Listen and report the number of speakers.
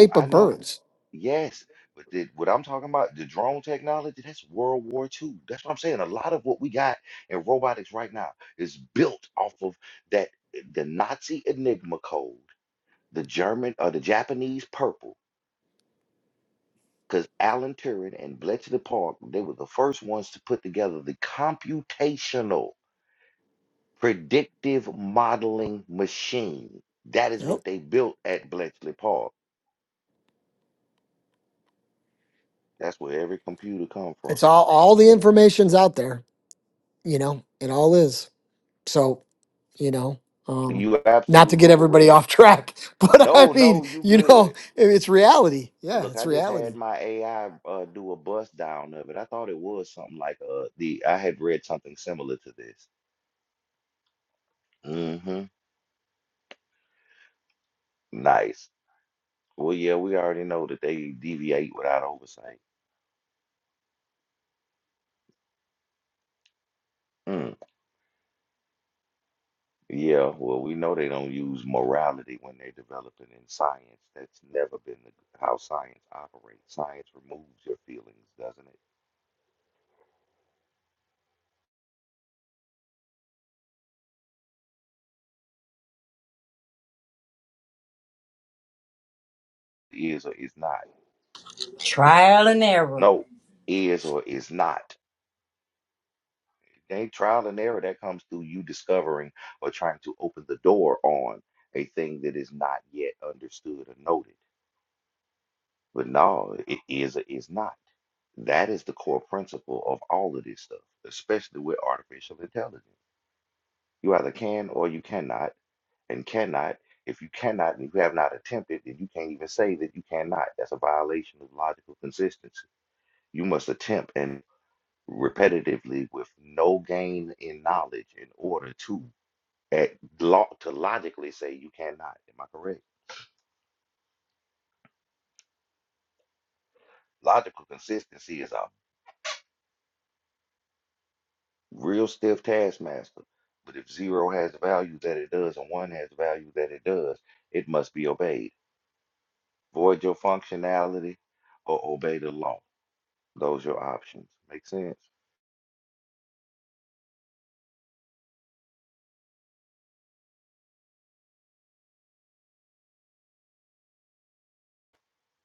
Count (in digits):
3